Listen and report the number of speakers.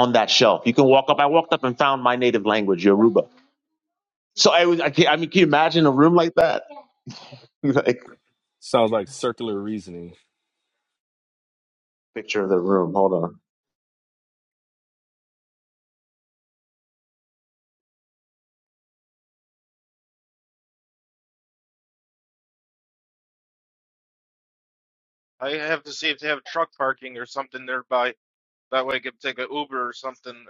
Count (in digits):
3